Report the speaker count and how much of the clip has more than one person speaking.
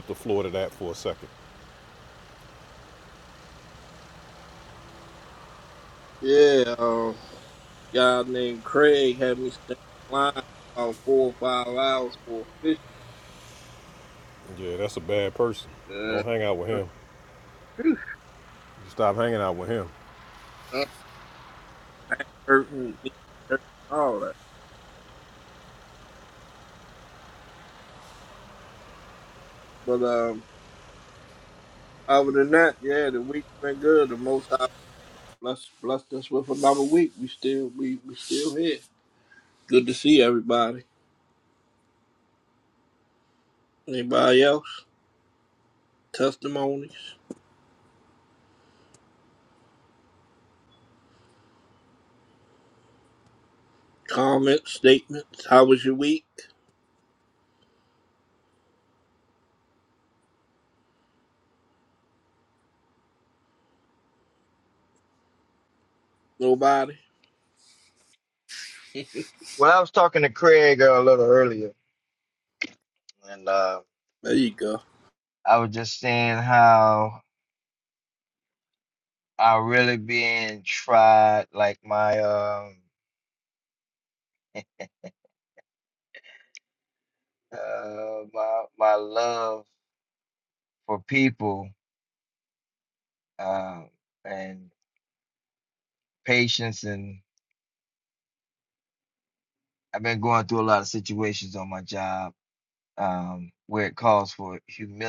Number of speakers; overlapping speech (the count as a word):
three, under 1%